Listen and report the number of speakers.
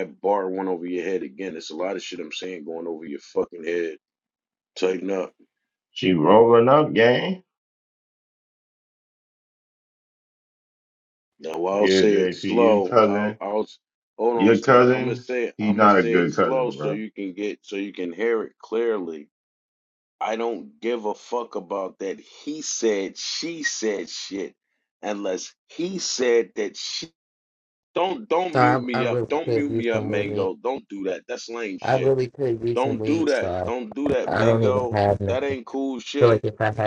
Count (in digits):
3